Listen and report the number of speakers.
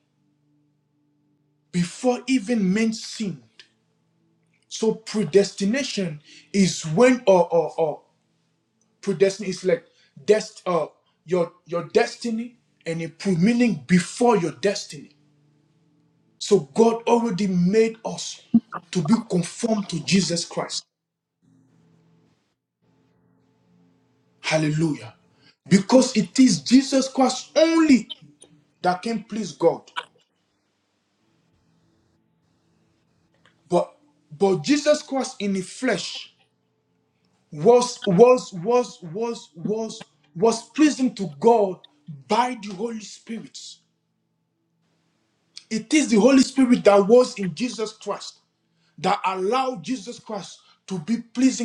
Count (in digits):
1